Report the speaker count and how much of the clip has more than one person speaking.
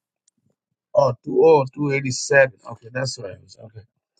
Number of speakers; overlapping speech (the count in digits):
1, no overlap